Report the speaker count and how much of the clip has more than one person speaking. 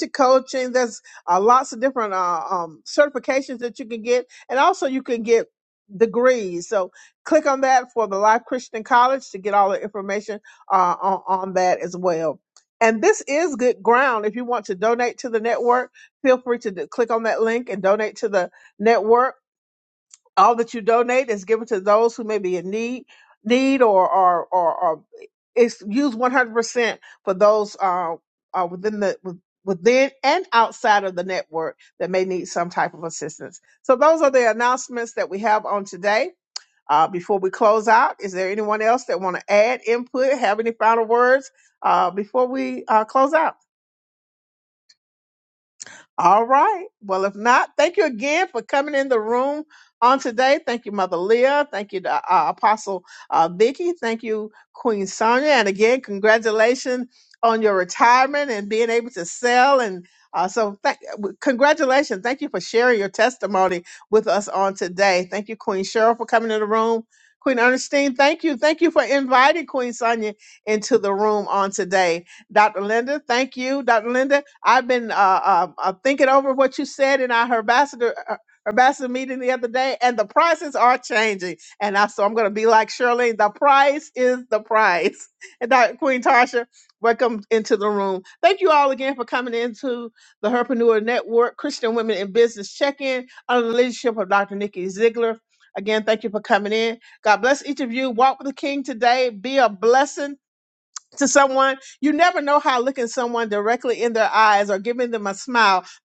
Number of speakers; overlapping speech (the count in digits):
1, no overlap